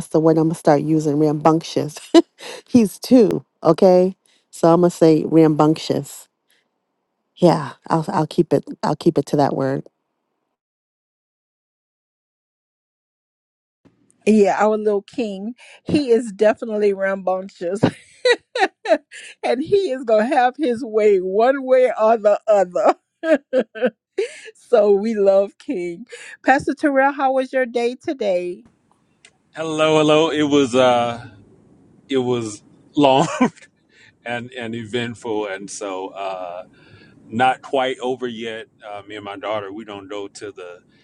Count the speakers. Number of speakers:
3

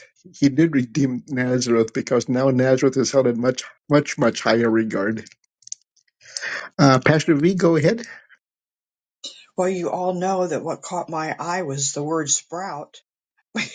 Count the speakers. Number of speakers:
2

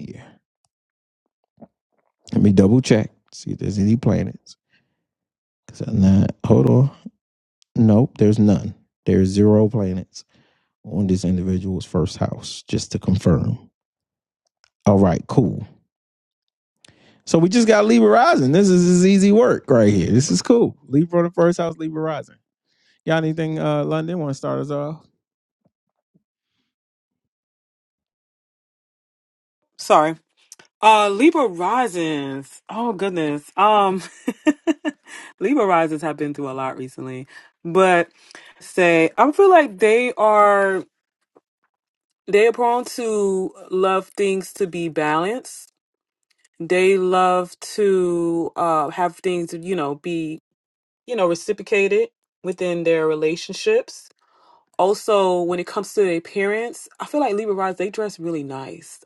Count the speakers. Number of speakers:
2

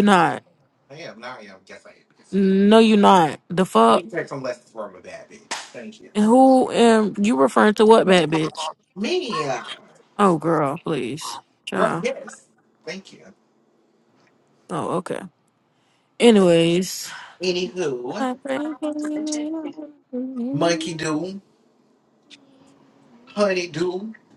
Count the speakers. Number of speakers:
2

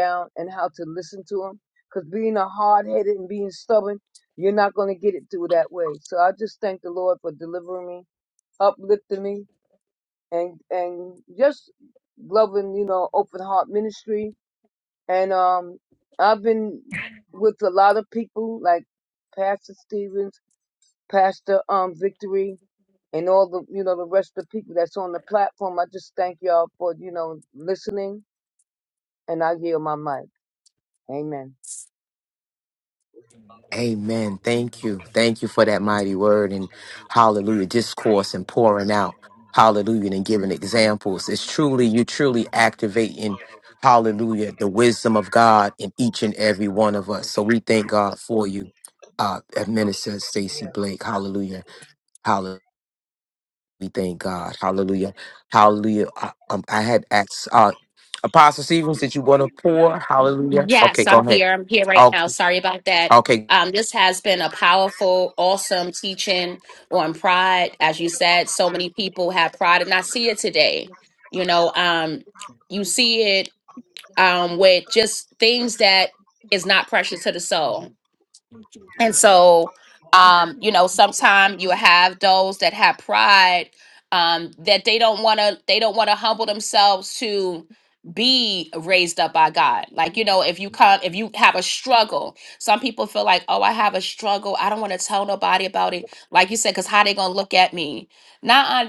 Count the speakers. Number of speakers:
3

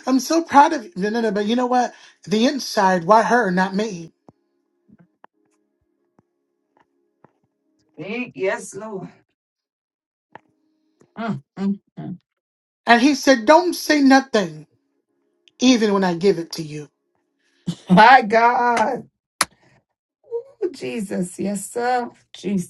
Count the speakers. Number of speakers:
2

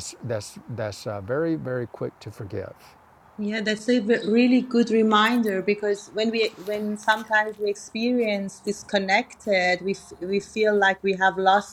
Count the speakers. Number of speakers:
2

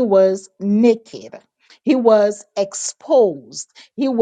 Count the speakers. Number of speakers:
1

